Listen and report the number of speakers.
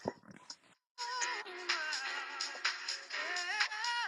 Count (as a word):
zero